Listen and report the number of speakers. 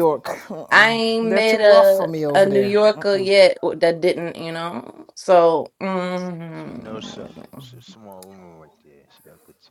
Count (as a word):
three